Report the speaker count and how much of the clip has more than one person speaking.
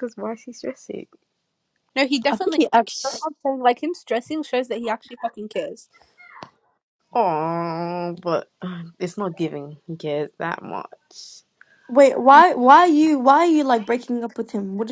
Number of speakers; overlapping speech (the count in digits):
3, about 4%